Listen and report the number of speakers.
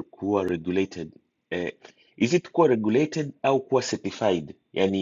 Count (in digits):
1